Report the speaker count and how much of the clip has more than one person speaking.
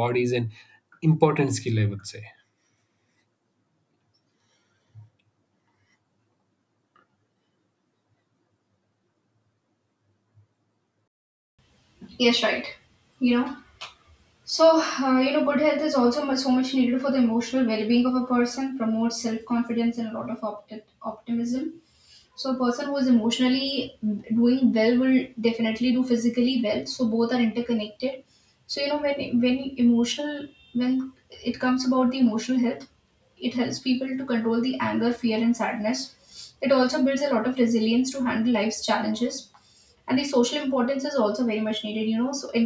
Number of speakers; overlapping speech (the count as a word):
two, no overlap